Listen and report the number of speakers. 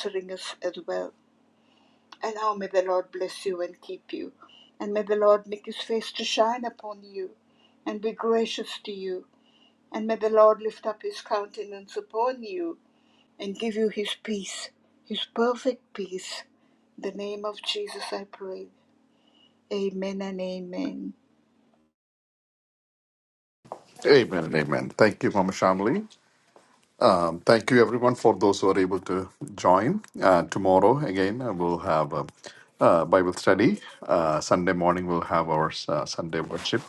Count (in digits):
2